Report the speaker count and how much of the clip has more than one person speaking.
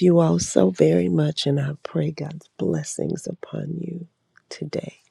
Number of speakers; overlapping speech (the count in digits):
1, no overlap